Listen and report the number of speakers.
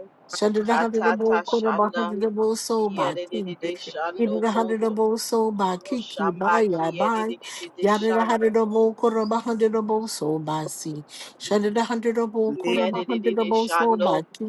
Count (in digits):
2